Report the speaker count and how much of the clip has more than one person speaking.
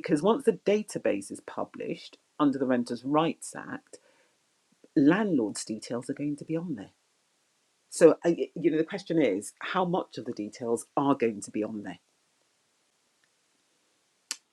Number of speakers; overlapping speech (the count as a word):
one, no overlap